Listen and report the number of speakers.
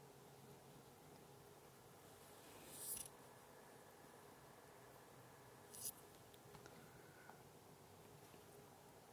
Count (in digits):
0